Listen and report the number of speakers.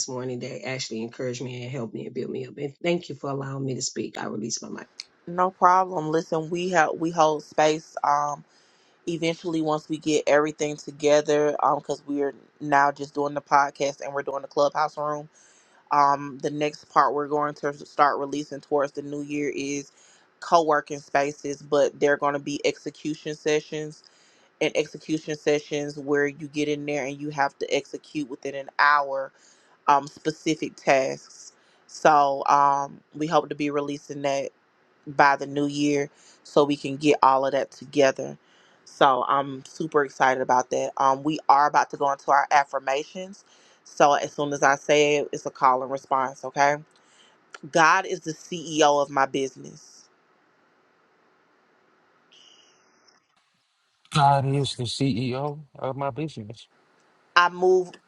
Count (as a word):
three